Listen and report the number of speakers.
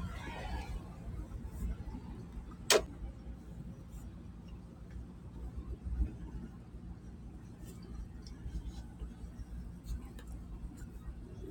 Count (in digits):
0